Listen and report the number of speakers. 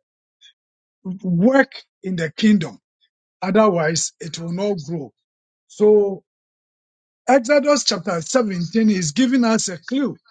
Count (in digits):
1